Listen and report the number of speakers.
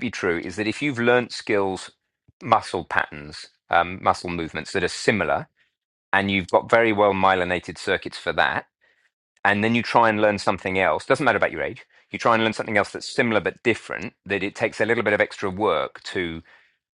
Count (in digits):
1